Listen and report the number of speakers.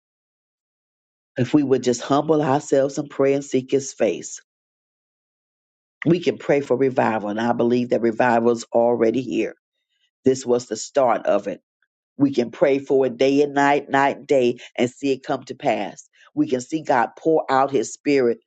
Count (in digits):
1